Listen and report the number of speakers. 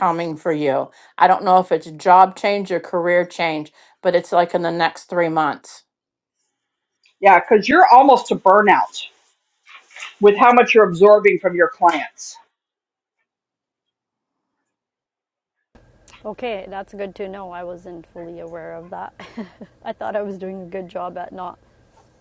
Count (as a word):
three